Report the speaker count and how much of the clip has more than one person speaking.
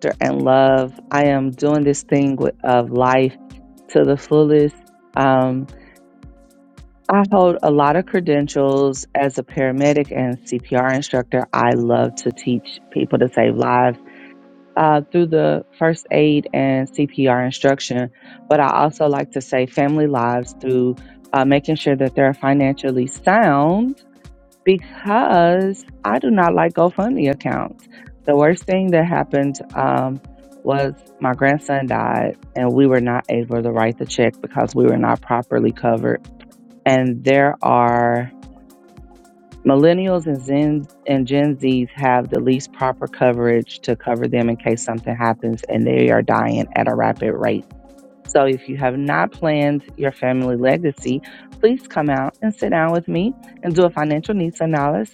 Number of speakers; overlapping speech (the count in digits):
1, no overlap